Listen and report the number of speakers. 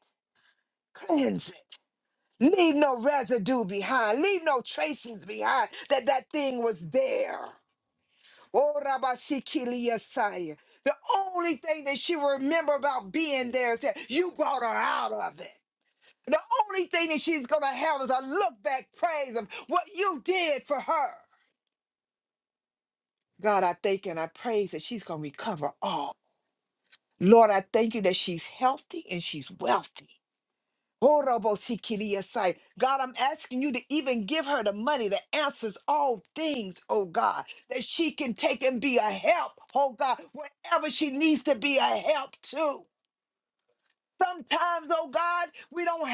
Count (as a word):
one